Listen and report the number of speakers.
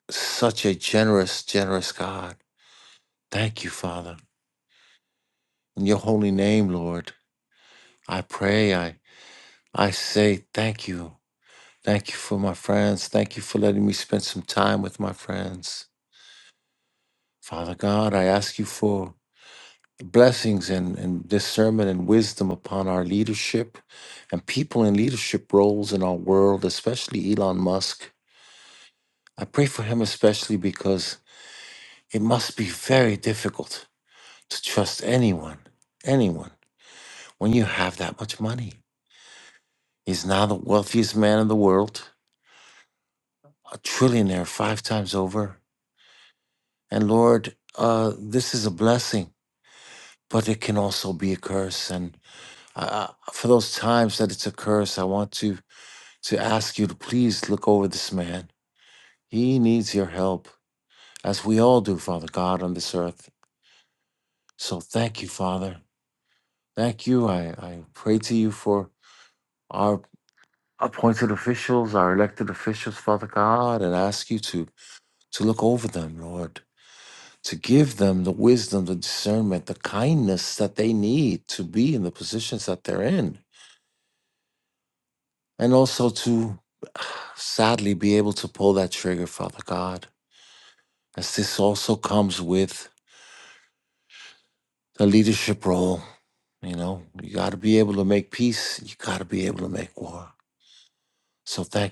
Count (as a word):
one